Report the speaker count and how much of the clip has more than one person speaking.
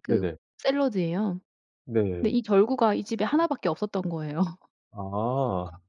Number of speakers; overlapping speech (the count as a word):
two, about 4%